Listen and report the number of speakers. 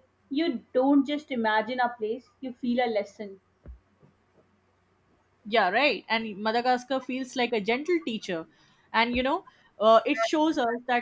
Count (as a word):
two